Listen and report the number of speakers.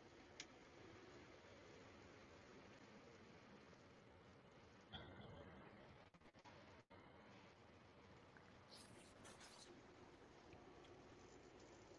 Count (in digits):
0